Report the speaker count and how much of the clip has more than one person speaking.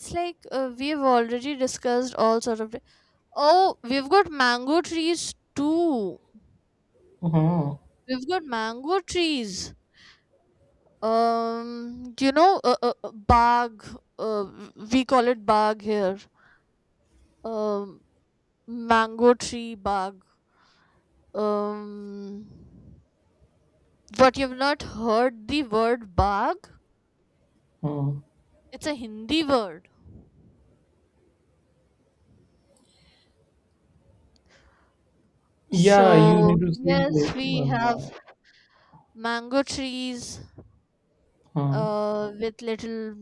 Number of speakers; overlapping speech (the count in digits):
2, about 5%